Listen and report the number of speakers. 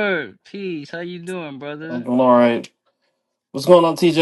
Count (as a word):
two